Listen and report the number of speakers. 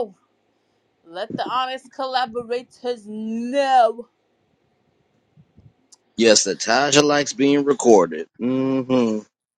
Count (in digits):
2